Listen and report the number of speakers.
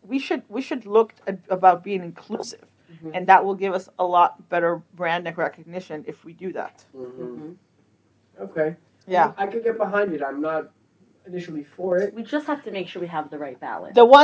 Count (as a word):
three